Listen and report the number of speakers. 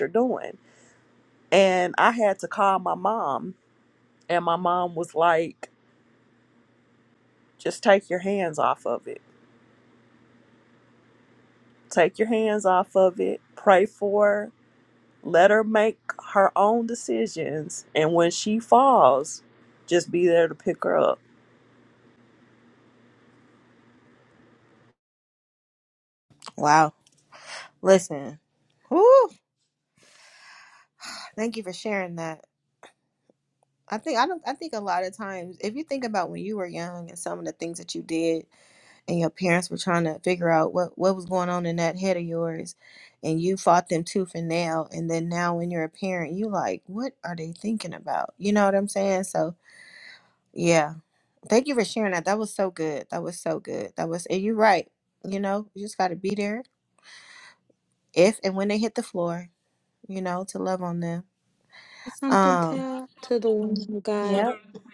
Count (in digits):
3